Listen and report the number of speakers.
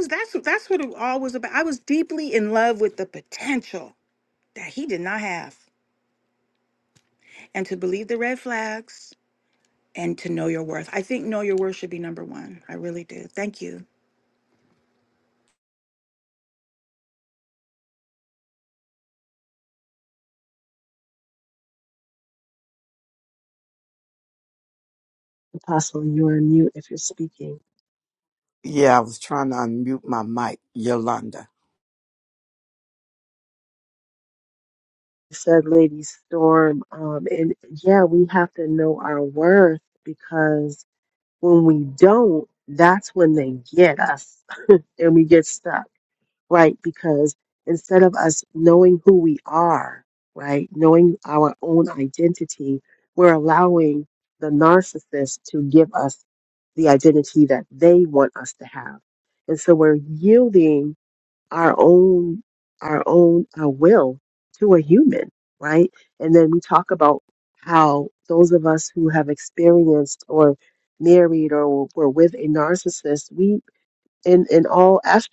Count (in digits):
3